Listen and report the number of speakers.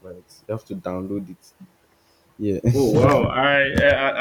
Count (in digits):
2